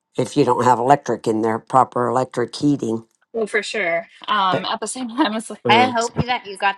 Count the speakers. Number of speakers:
three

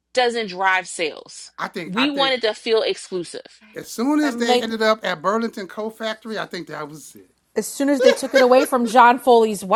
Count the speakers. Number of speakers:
three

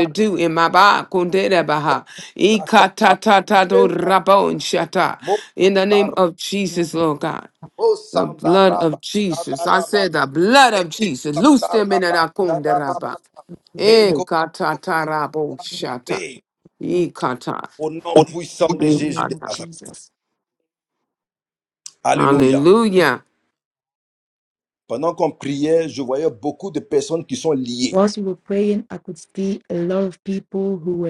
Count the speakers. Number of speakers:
three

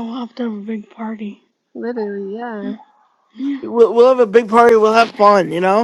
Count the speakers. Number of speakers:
three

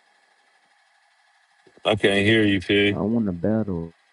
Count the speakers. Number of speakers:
two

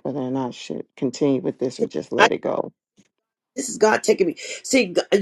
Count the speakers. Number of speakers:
two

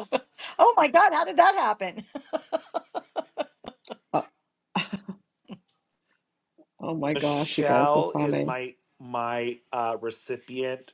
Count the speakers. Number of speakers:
three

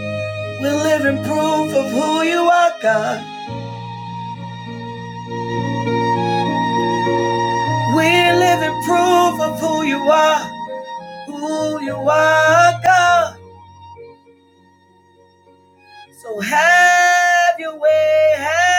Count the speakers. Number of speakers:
one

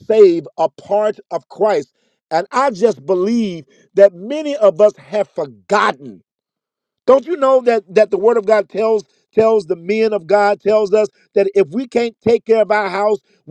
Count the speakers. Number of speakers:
one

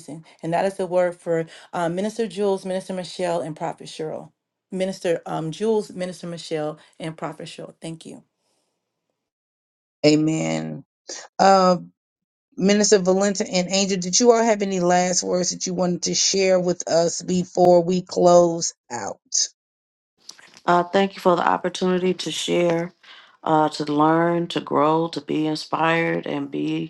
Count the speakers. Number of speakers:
three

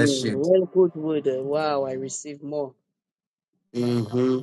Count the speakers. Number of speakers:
two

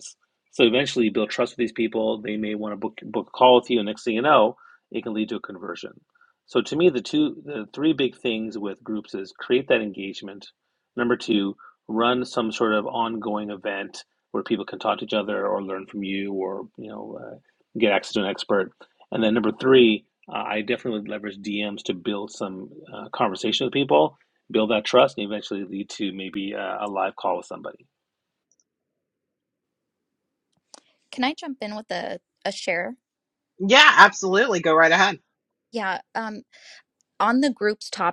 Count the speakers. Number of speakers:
three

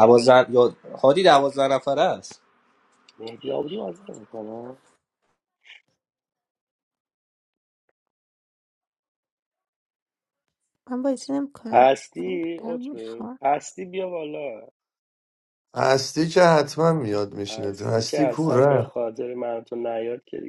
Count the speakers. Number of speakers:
four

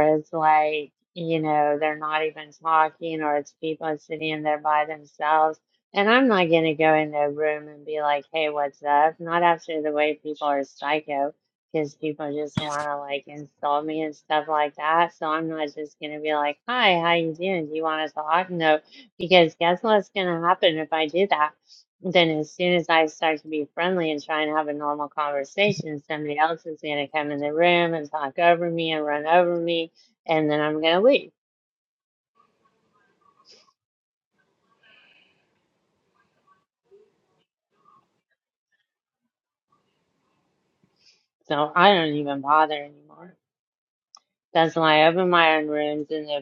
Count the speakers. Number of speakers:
one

